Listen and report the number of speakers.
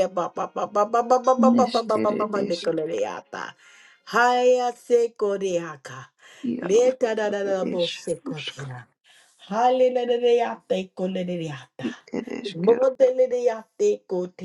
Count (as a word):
two